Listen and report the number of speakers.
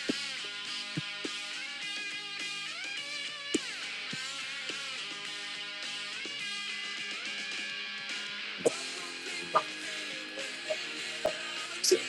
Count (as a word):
zero